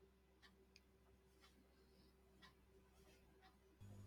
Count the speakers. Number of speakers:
0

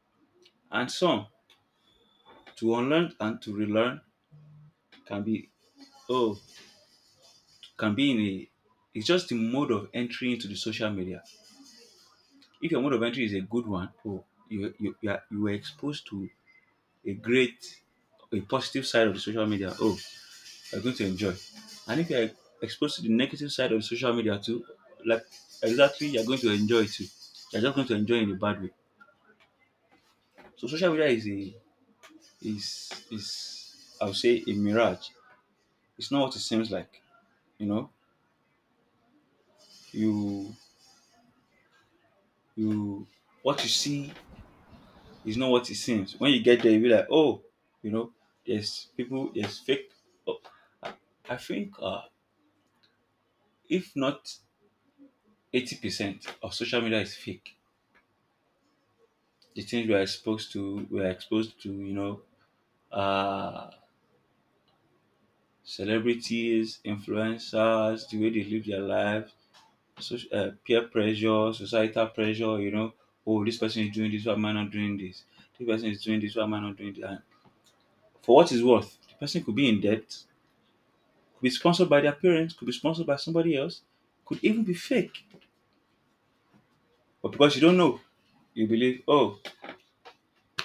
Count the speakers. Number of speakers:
1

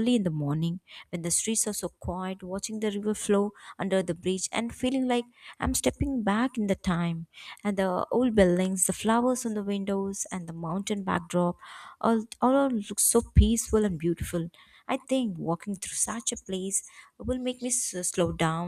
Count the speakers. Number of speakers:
1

